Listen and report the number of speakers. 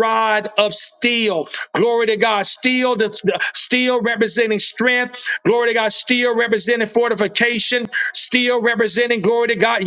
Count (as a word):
one